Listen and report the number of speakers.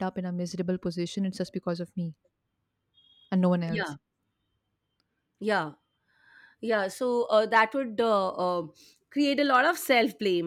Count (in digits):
2